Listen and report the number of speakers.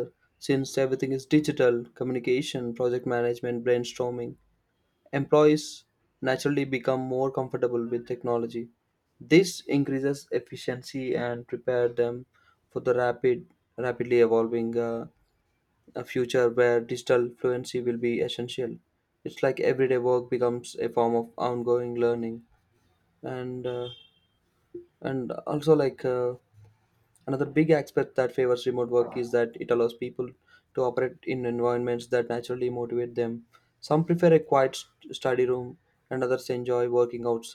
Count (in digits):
1